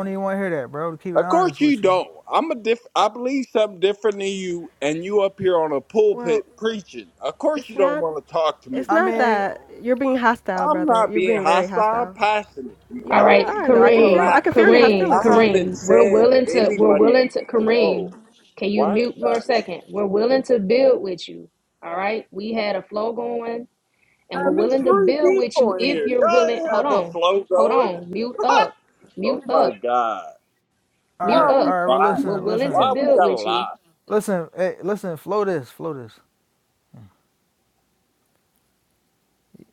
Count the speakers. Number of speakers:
four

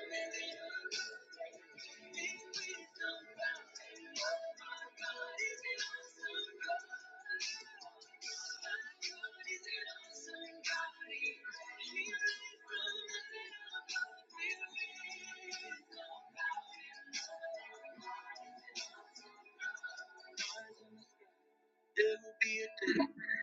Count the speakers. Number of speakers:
zero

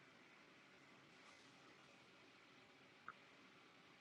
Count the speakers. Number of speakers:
zero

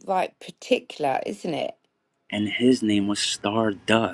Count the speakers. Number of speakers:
two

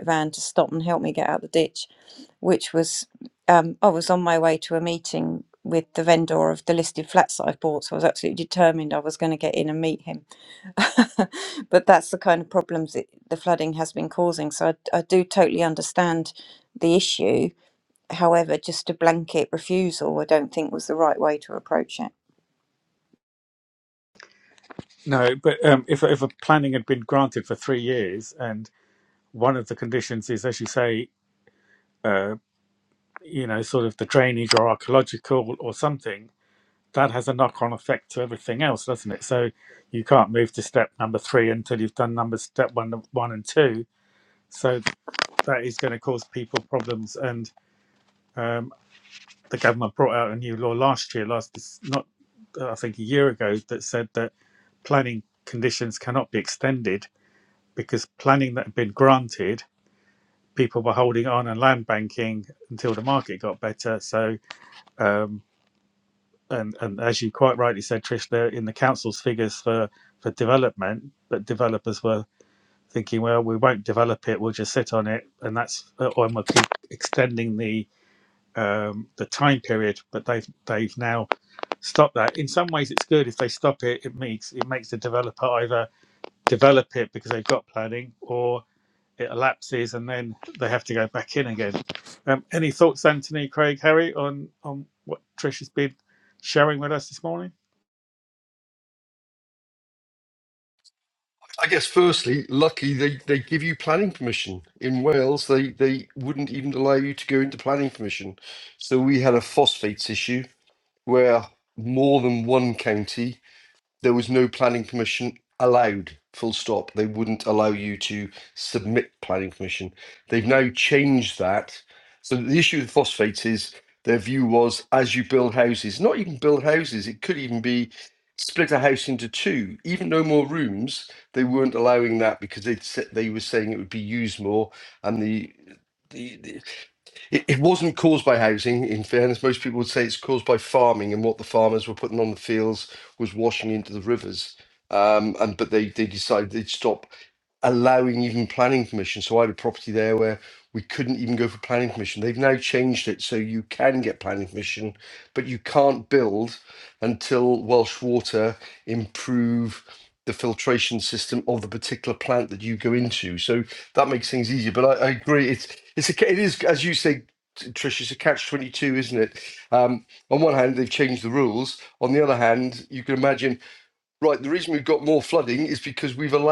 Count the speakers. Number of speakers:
three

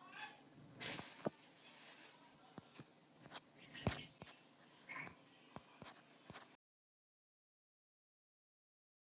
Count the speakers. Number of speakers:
zero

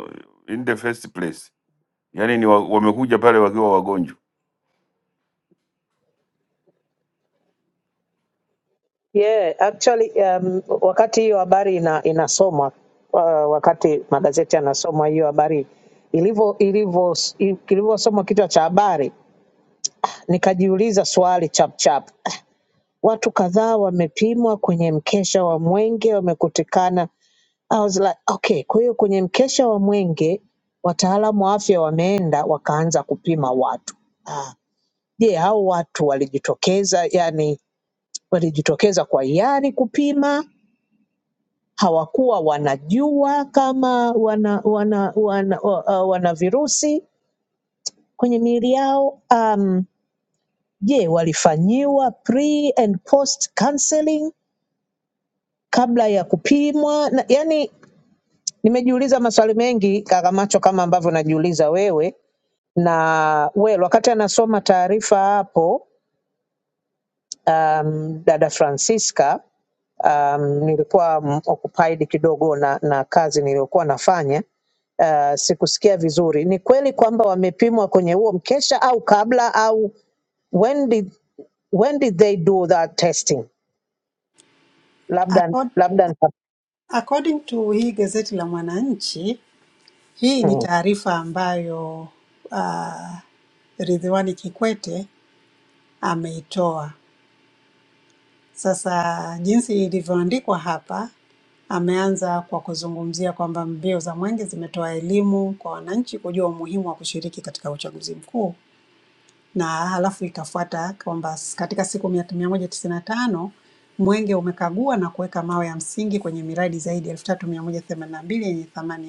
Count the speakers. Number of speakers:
three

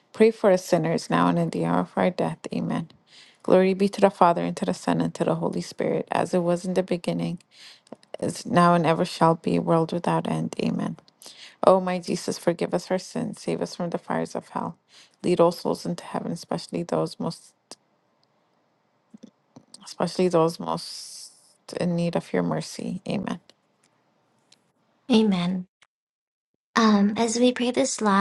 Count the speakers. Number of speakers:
two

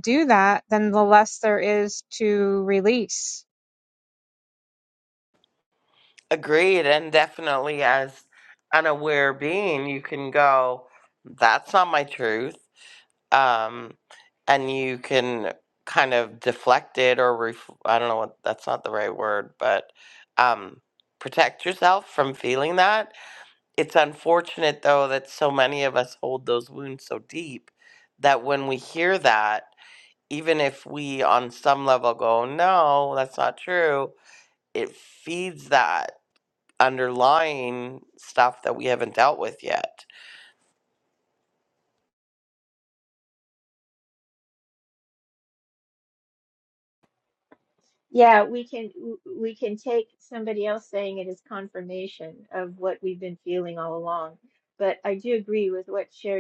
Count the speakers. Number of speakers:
three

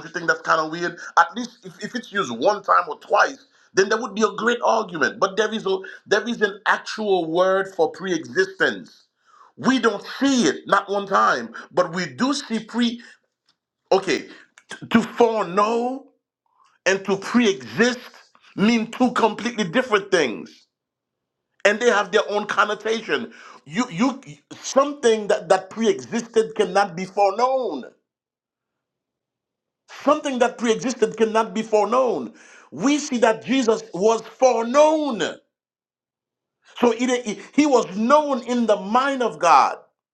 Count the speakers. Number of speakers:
one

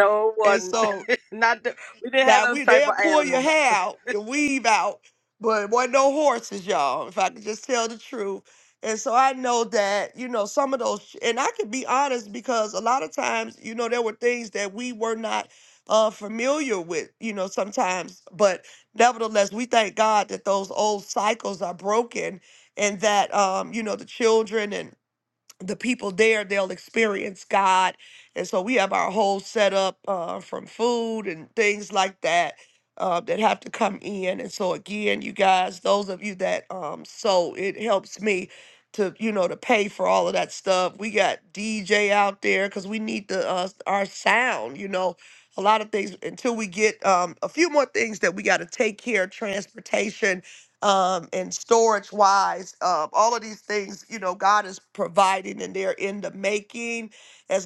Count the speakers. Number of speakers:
two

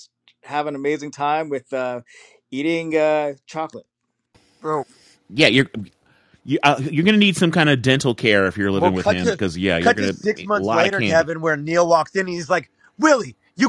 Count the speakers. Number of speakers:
three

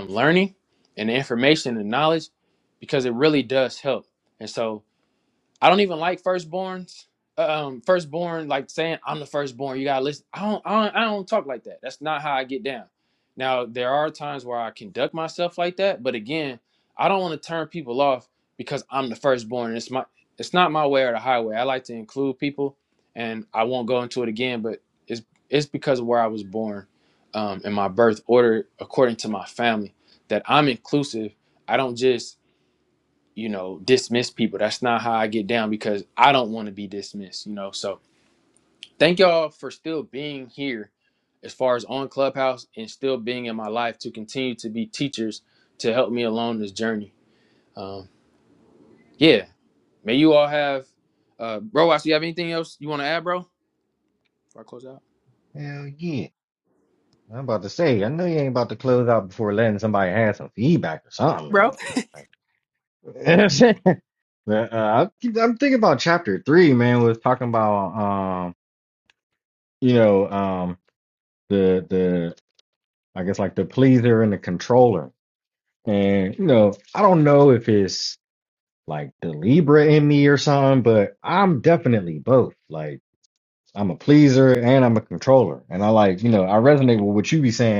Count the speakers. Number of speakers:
two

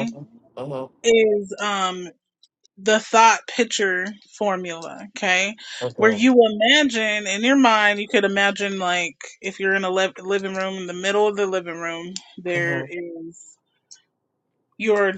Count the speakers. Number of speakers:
two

